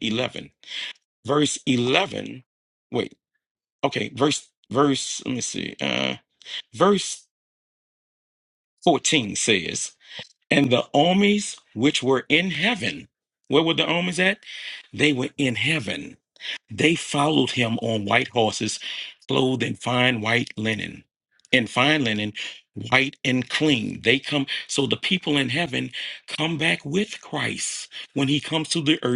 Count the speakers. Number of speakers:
one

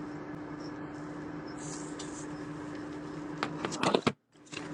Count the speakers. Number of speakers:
zero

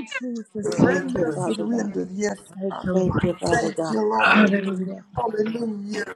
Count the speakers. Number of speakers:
three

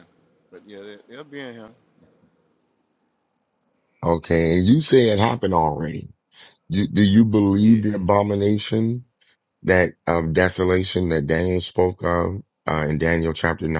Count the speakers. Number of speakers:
two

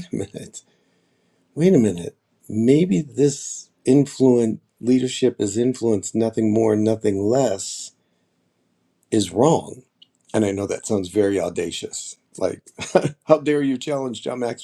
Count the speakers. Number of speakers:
one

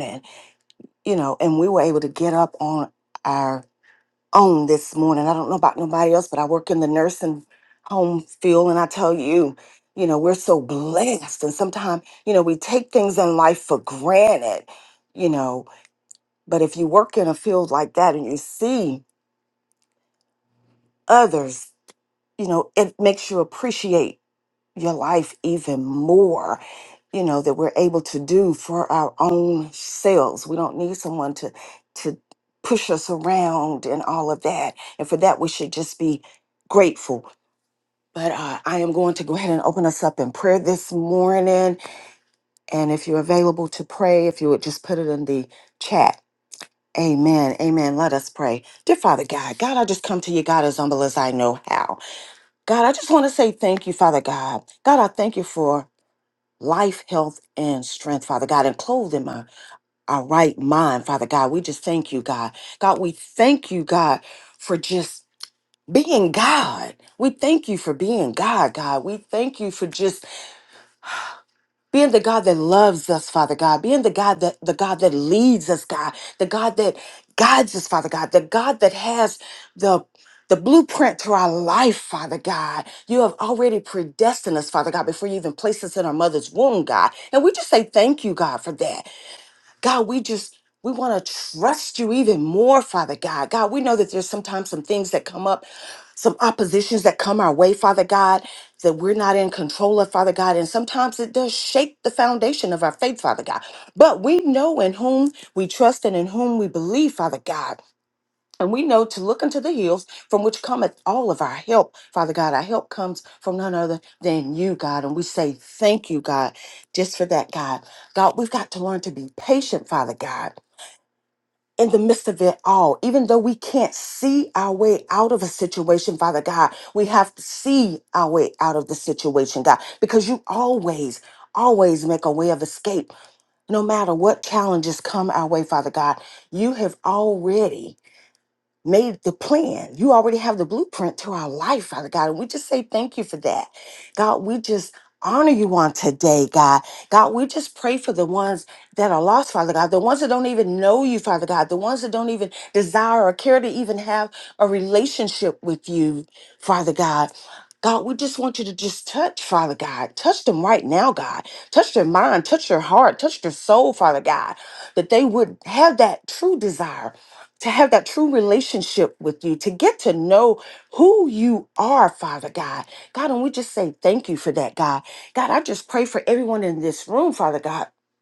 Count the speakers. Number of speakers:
one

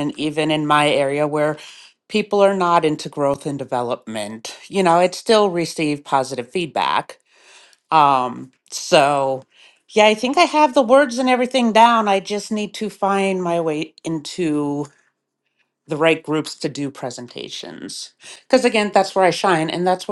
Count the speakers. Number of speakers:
one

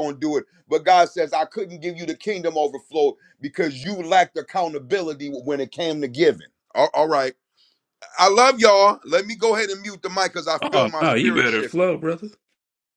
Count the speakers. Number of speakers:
two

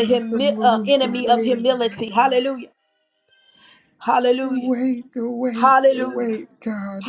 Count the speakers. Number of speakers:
two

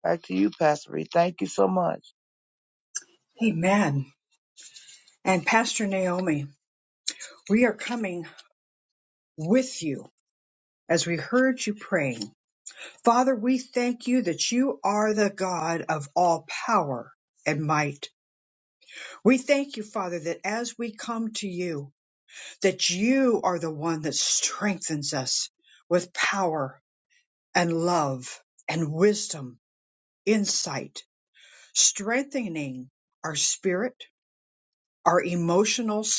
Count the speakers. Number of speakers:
two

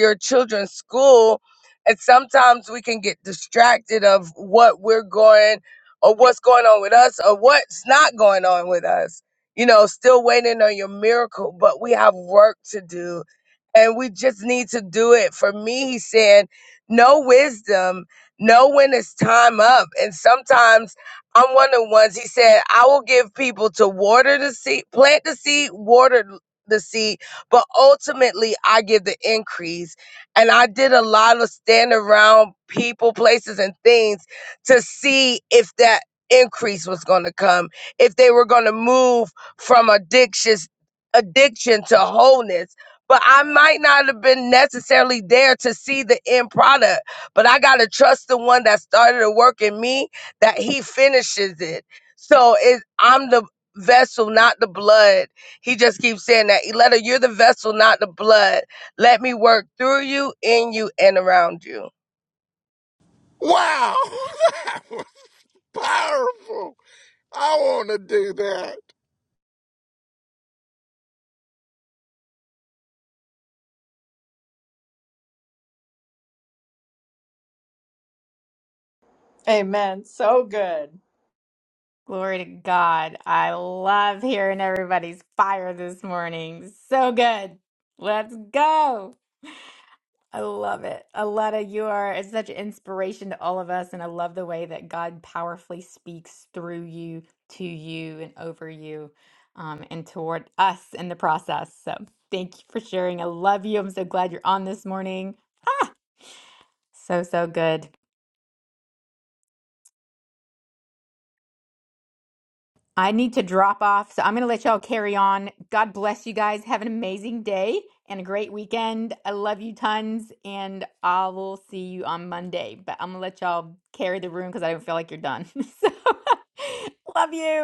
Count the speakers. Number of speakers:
four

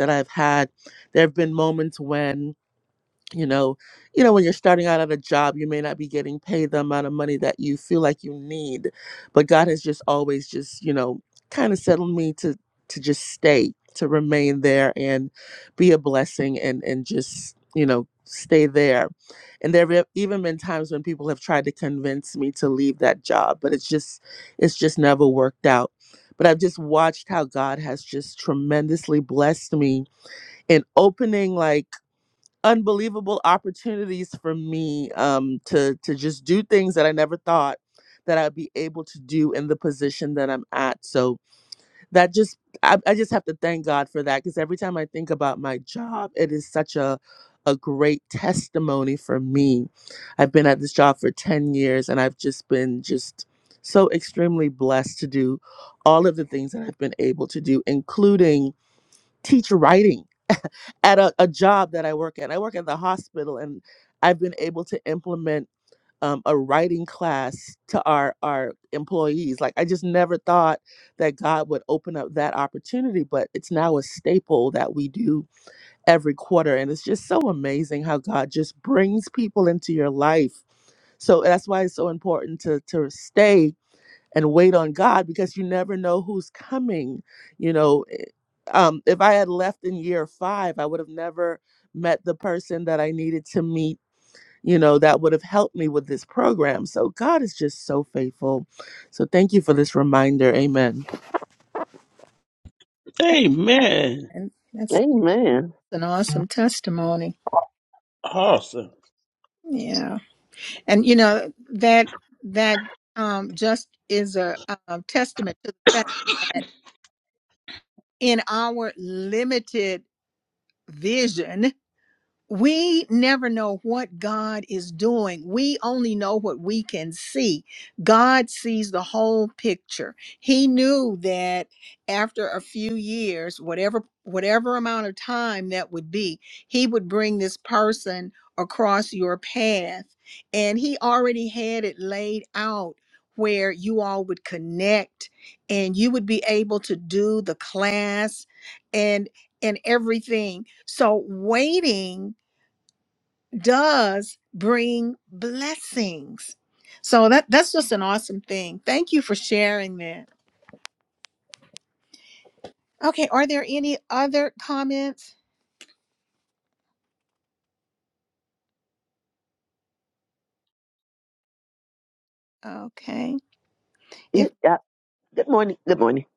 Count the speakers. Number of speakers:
four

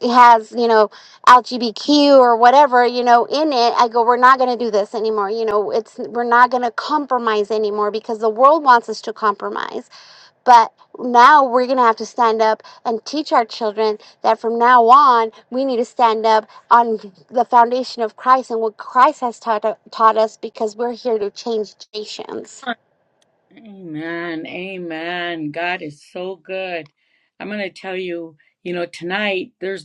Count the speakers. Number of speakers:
two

